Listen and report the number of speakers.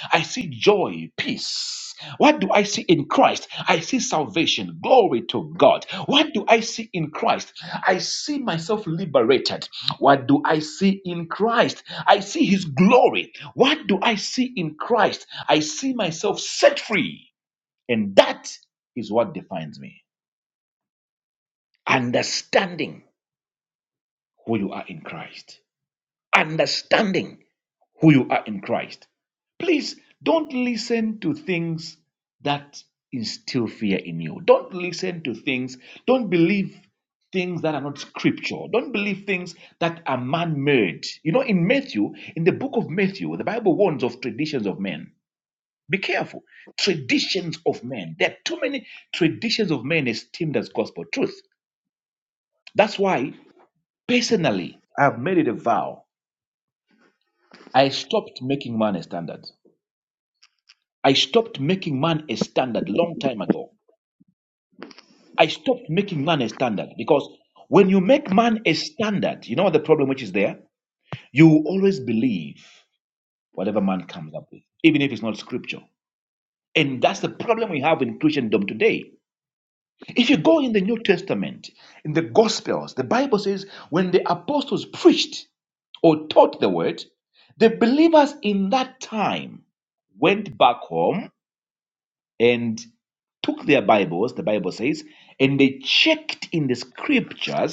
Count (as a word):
one